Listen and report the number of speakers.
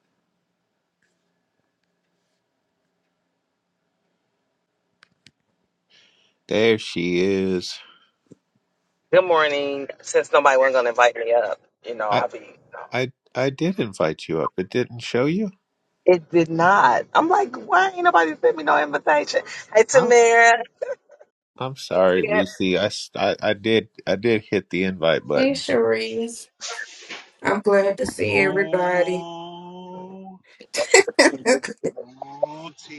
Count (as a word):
four